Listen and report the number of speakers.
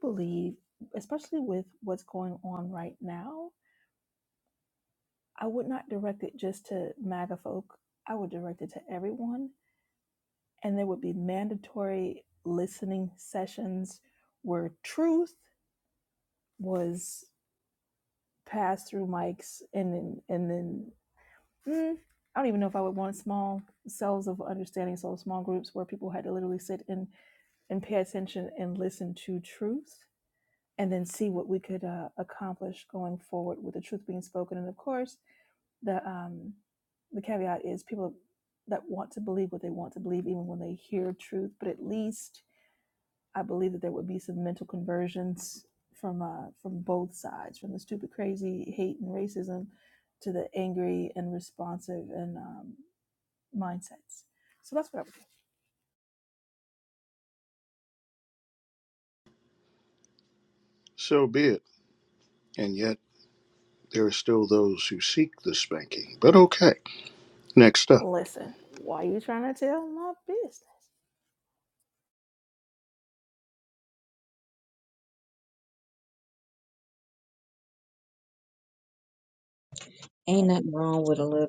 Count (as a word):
three